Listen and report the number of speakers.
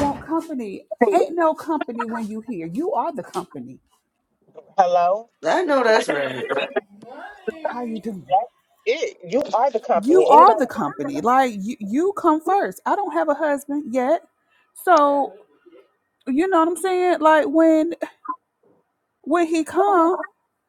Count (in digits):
3